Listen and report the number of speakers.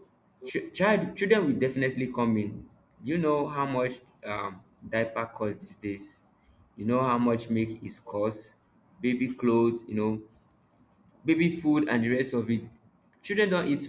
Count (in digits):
1